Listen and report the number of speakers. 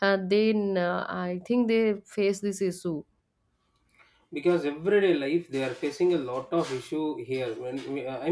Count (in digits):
2